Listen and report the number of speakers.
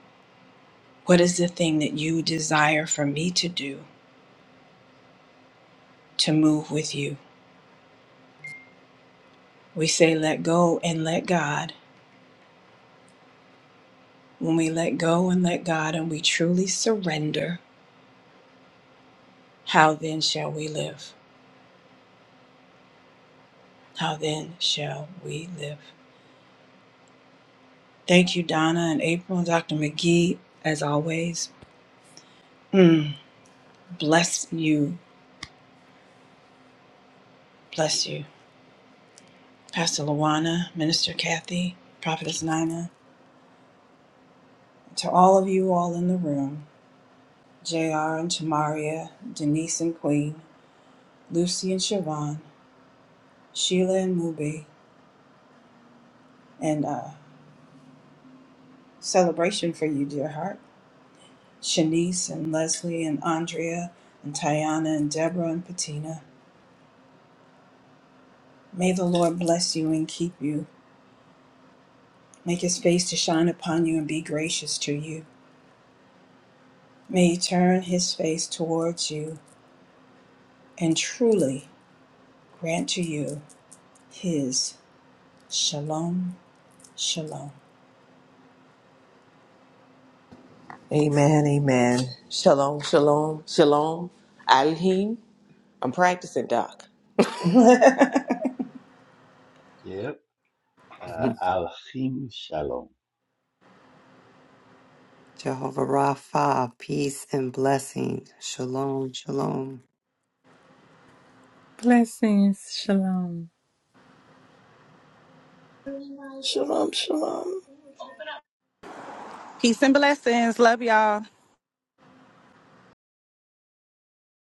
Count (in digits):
7